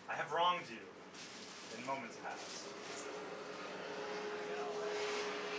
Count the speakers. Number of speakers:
two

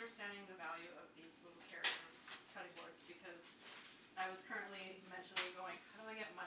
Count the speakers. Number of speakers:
one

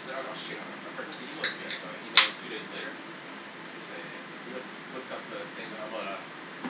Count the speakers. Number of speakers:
one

